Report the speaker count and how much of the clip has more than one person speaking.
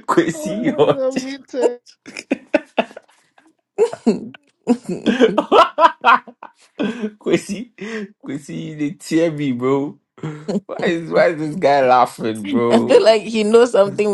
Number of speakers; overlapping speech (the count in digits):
3, about 5%